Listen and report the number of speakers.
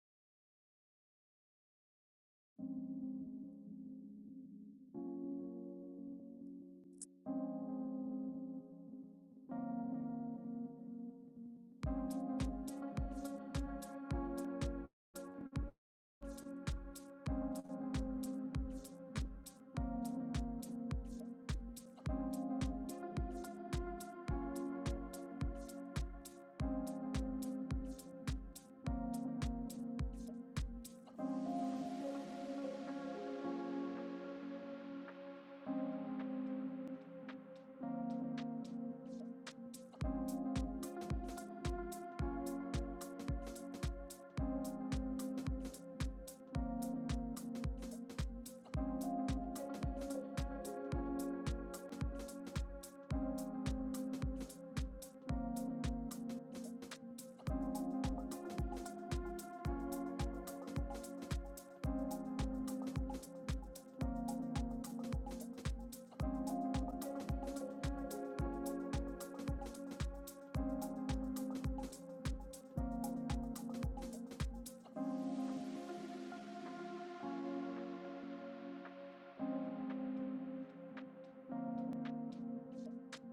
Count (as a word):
zero